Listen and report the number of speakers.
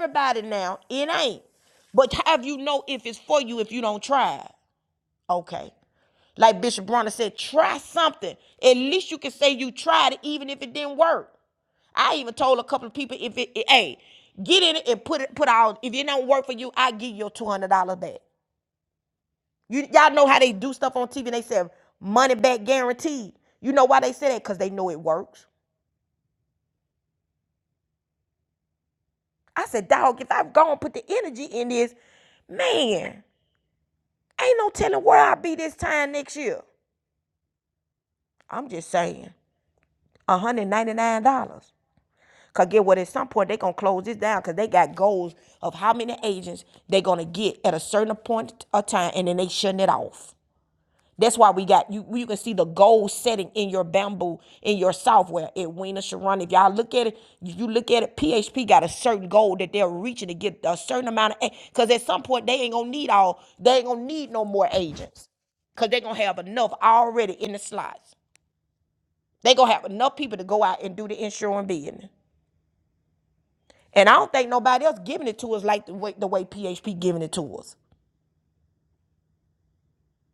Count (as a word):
one